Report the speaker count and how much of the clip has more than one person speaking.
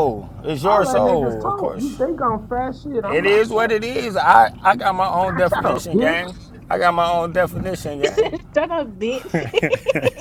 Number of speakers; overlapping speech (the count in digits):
3, about 35%